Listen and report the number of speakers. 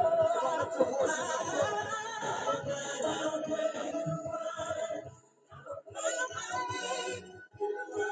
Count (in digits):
0